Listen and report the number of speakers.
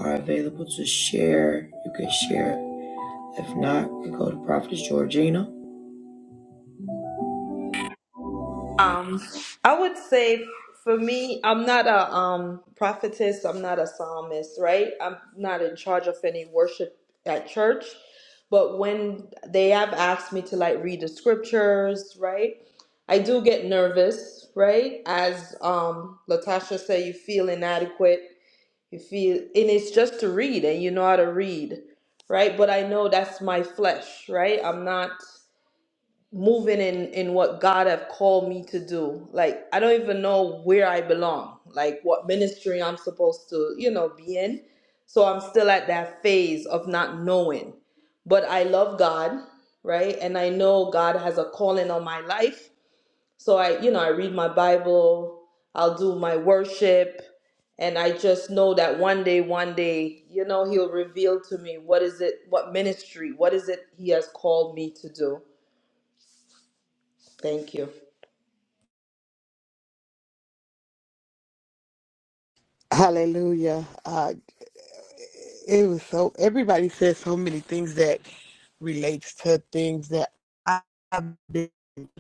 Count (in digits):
3